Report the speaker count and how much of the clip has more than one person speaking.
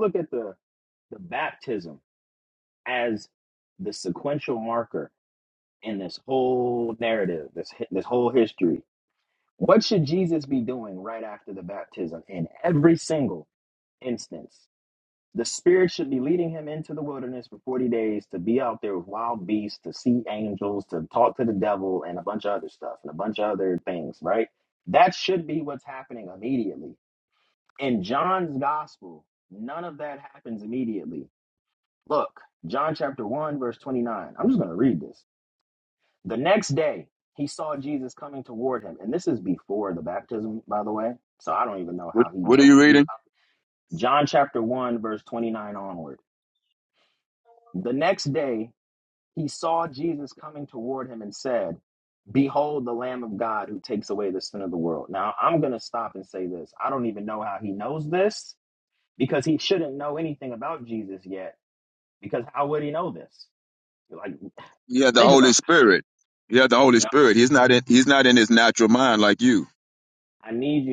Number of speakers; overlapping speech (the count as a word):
two, about 2%